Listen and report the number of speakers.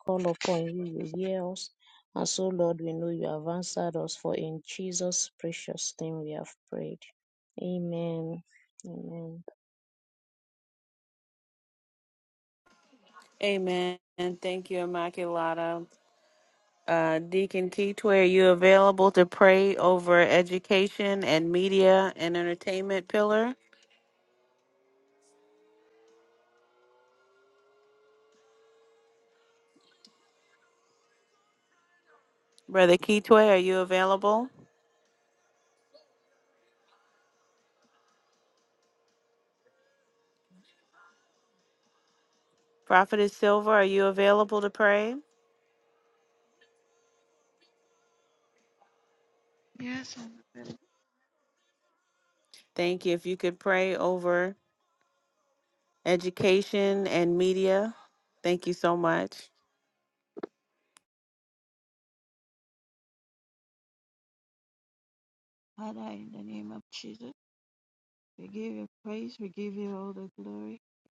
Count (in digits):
3